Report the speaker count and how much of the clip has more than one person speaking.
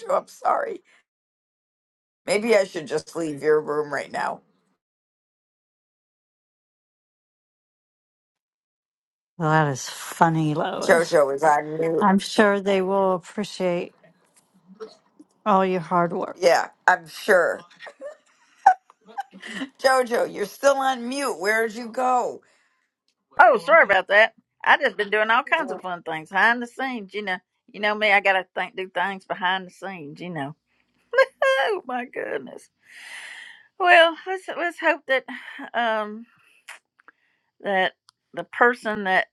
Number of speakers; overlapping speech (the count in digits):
3, about 1%